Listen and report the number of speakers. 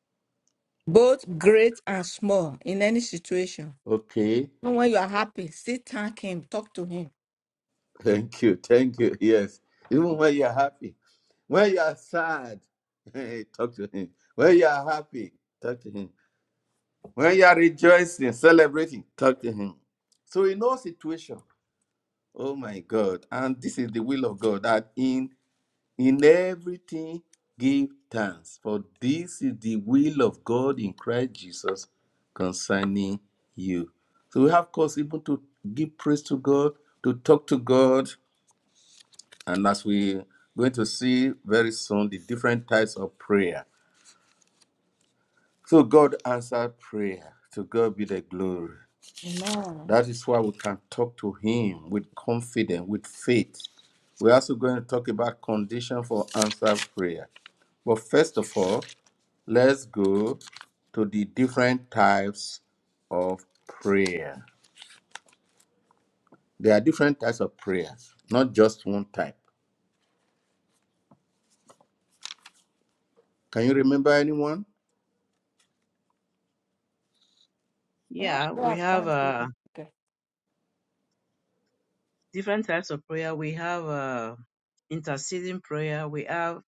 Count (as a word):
three